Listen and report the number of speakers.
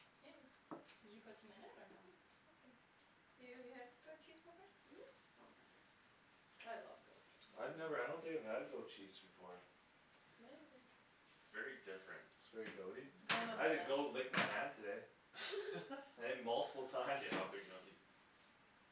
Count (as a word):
four